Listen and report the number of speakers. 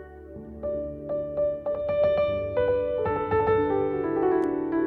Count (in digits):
0